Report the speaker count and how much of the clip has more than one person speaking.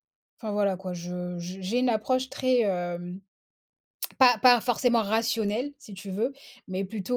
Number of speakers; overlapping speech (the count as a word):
one, no overlap